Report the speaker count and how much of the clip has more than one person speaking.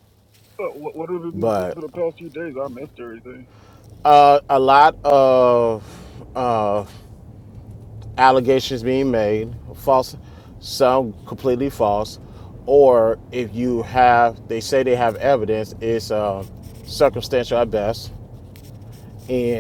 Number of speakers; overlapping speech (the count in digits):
2, about 2%